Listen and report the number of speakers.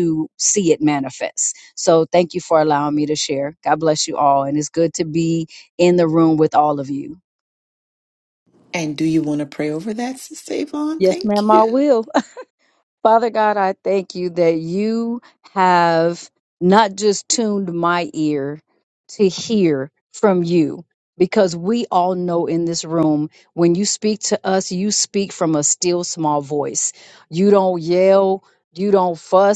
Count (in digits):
2